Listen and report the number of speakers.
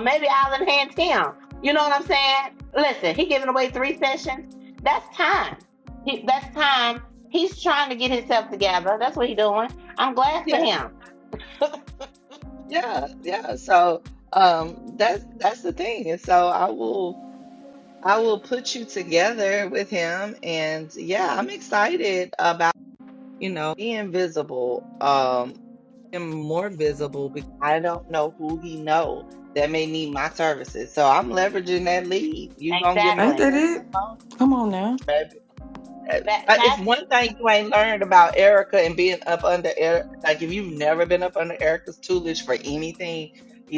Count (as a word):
three